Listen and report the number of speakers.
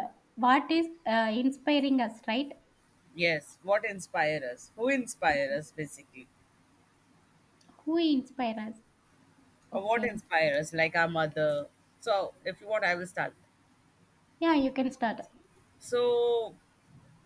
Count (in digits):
2